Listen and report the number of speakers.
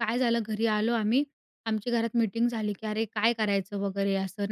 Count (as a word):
one